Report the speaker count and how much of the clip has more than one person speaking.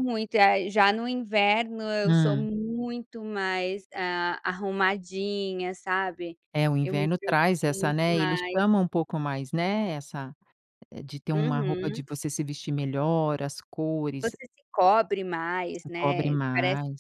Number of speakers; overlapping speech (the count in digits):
2, about 24%